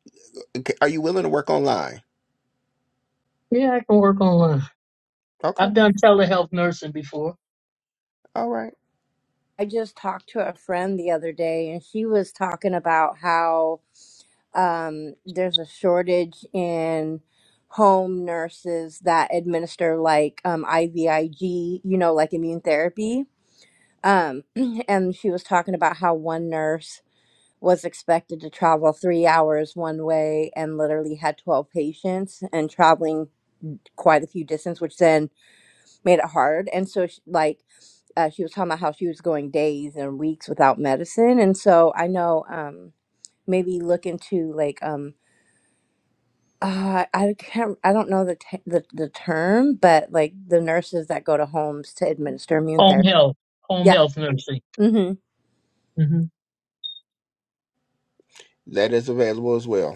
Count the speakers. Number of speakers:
three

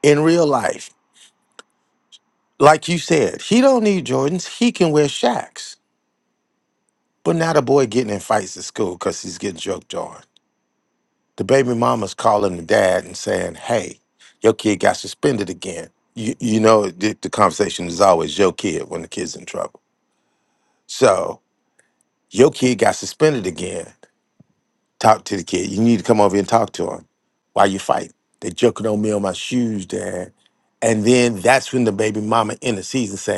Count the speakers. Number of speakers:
one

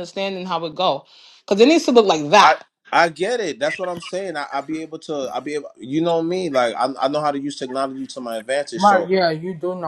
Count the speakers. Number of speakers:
three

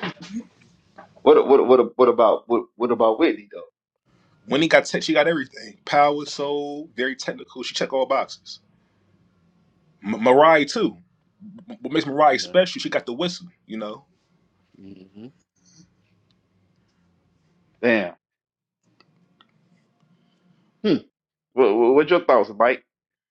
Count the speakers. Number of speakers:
two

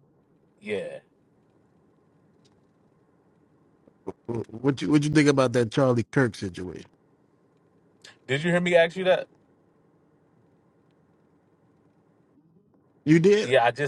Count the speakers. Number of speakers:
two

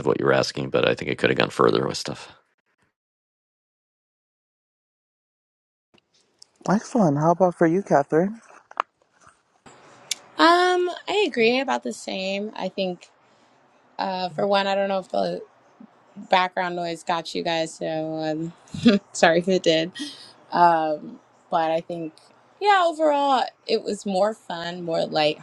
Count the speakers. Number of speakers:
three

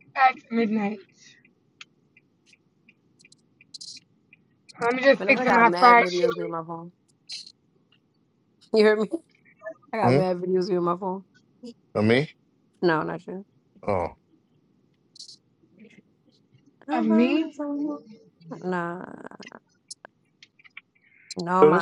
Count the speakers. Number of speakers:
three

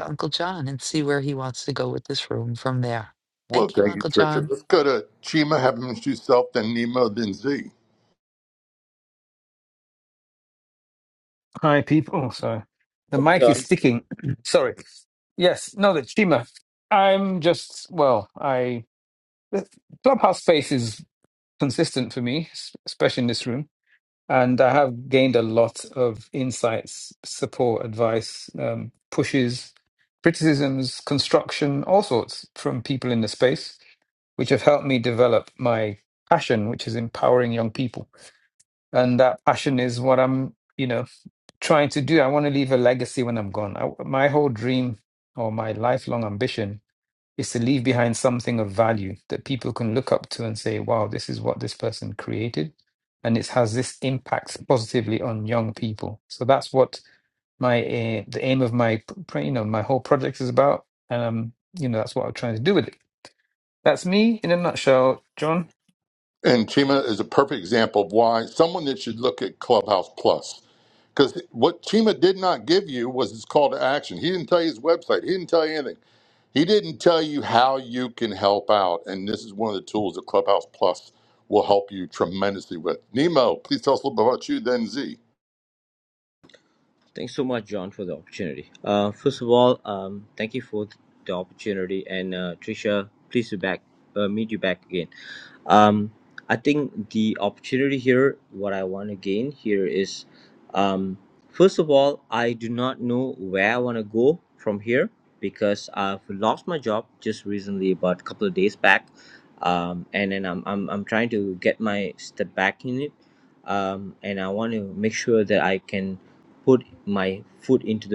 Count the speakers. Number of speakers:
four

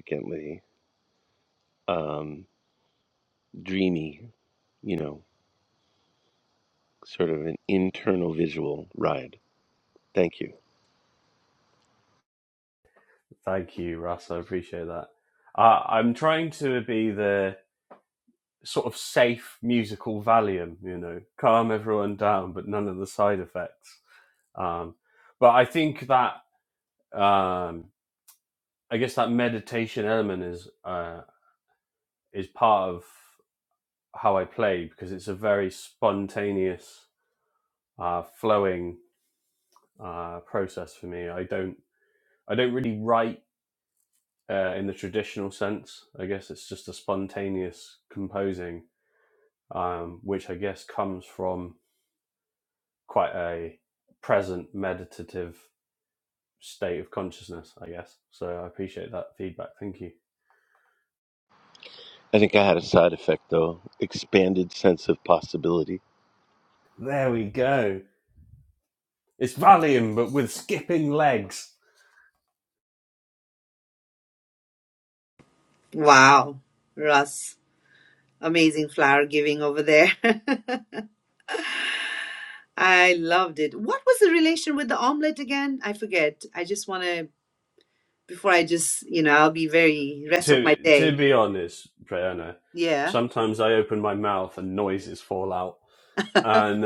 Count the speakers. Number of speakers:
three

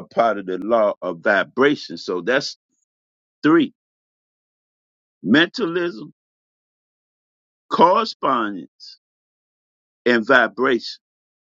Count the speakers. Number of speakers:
one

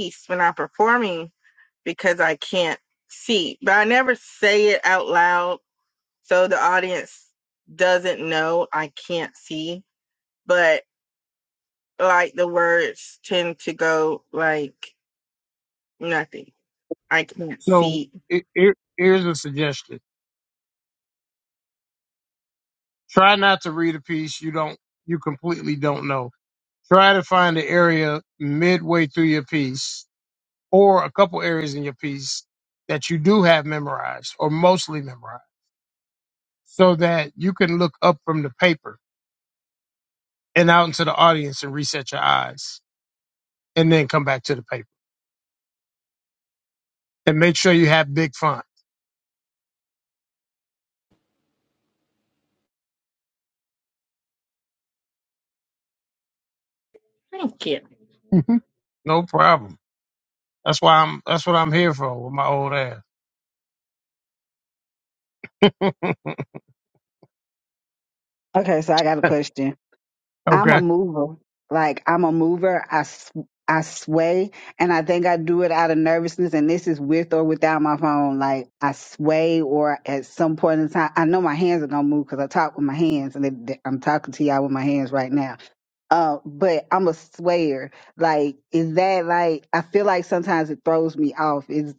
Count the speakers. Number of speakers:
three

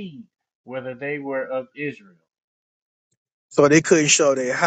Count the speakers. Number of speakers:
two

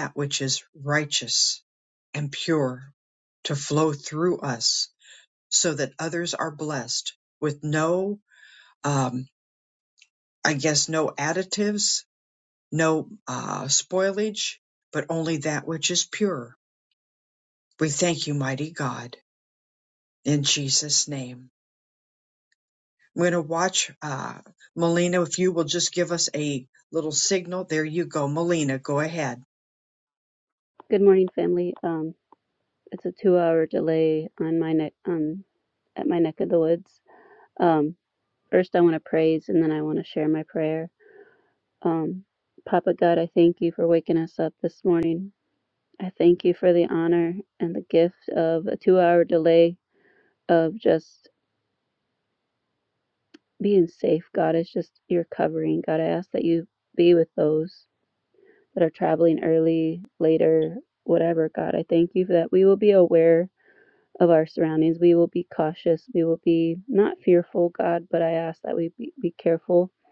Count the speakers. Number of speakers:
two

